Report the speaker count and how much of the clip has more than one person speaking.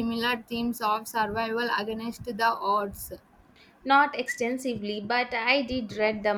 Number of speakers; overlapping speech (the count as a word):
two, no overlap